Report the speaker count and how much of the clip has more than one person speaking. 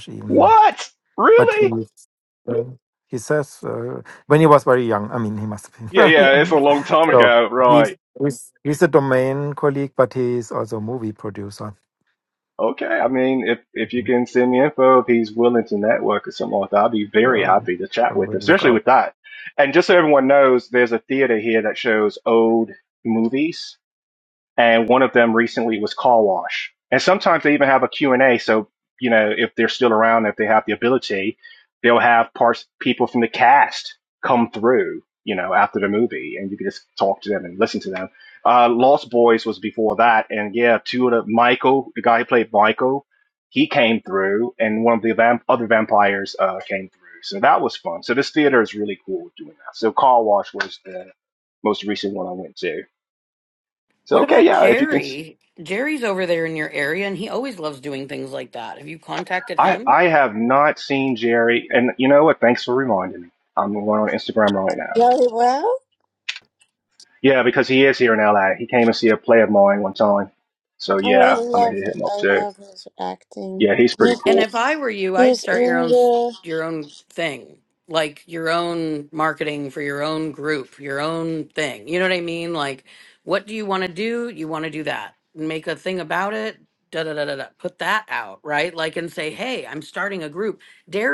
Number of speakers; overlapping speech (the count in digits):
4, about 7%